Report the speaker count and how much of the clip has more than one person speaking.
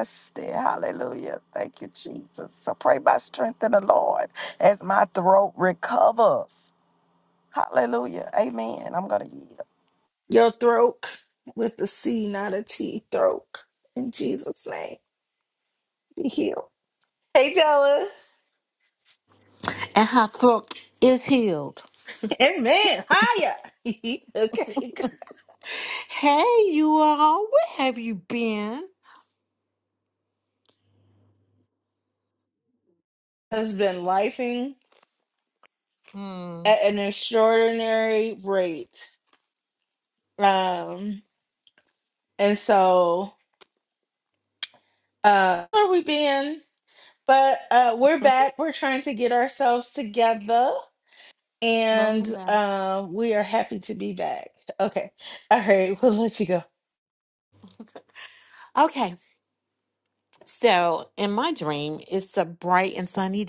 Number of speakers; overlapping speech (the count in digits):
3, about 1%